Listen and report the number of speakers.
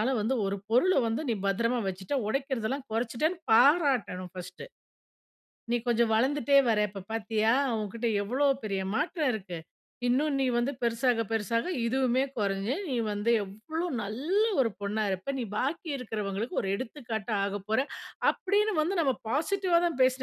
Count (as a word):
one